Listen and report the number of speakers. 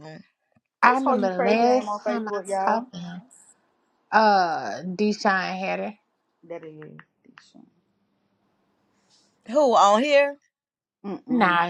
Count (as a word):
three